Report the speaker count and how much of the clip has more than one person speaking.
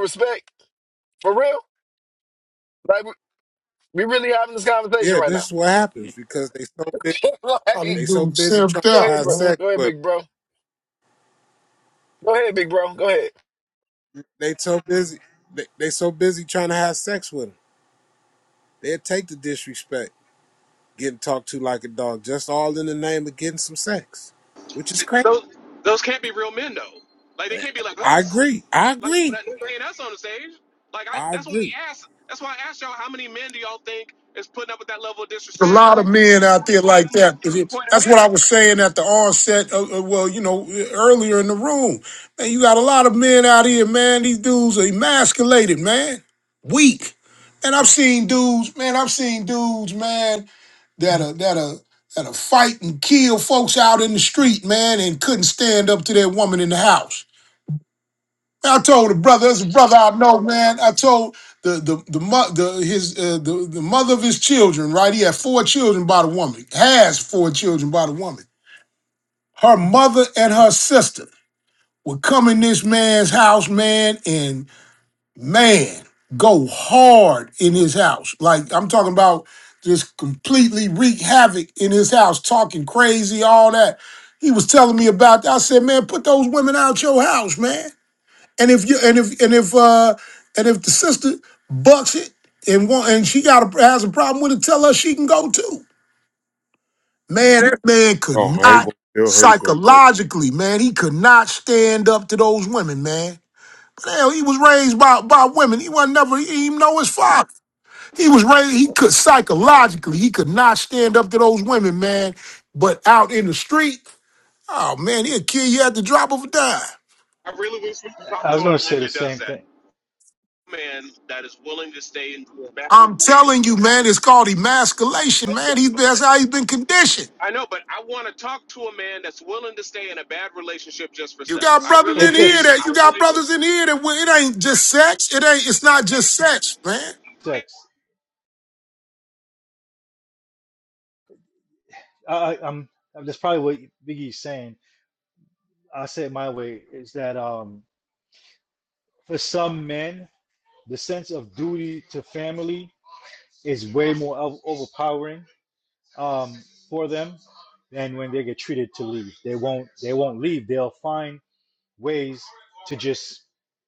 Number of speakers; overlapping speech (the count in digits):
5, about 6%